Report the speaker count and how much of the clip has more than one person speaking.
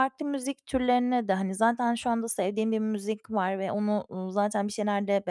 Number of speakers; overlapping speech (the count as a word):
one, no overlap